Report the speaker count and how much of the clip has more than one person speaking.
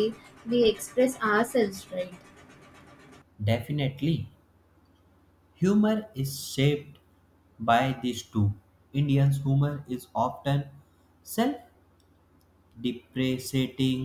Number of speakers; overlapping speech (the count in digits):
2, no overlap